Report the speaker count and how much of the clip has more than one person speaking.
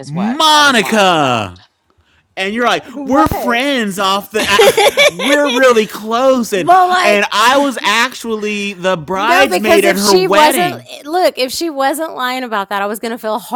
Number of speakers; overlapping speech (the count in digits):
3, about 27%